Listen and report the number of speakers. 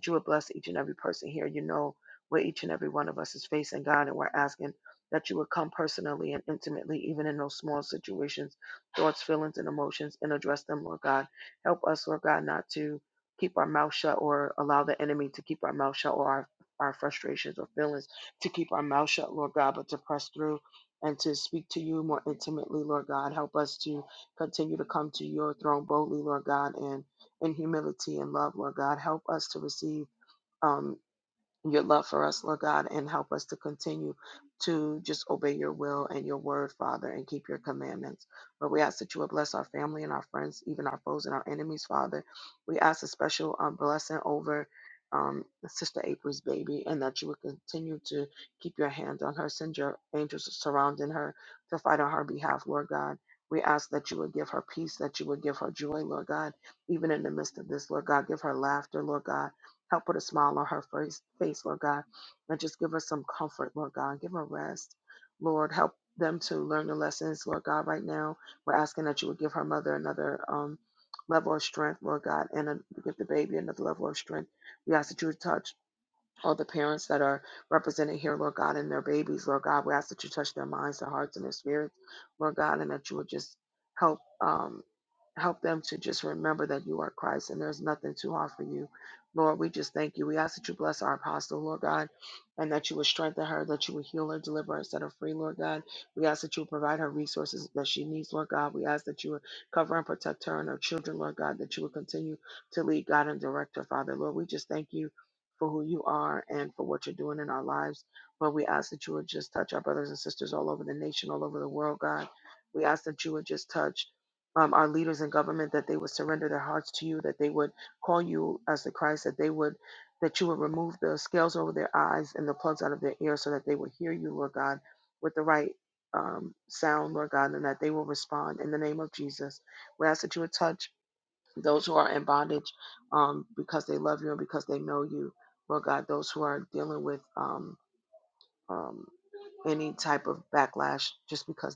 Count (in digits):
1